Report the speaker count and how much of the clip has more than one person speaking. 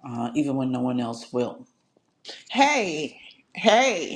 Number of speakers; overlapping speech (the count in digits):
2, no overlap